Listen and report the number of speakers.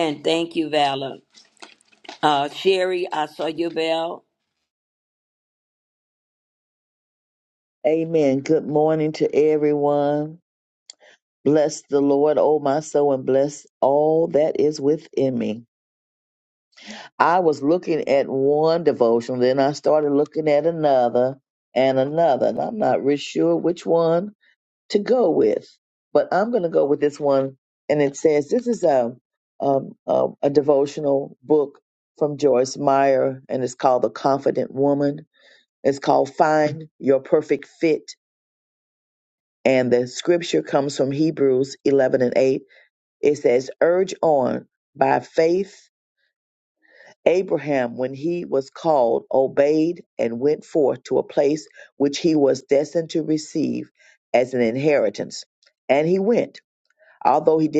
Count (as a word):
two